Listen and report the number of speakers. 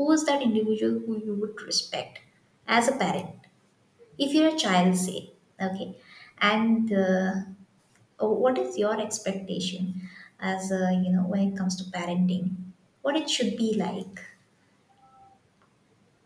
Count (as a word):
one